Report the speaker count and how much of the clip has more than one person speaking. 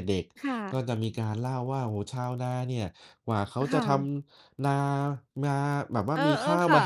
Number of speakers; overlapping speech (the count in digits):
2, about 16%